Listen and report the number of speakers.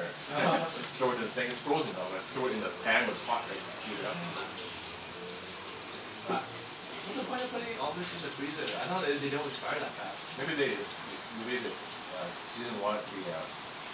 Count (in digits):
2